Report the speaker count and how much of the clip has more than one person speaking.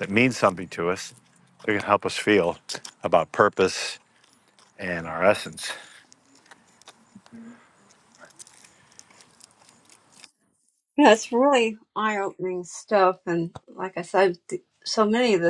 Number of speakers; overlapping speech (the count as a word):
two, no overlap